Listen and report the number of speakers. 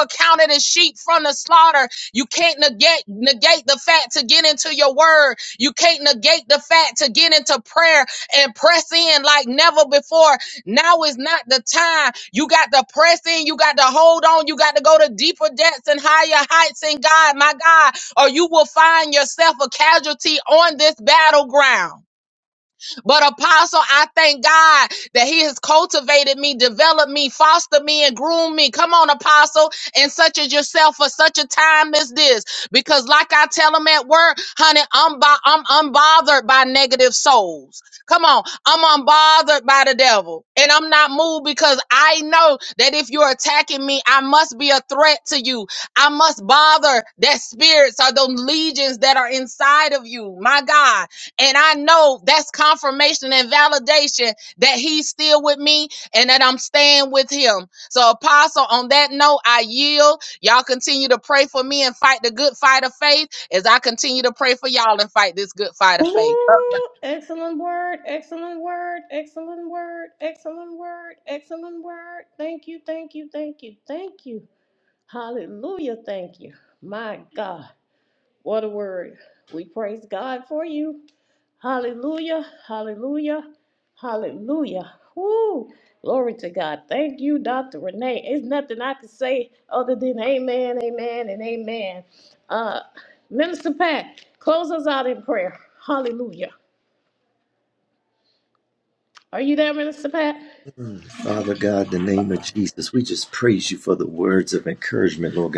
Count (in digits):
3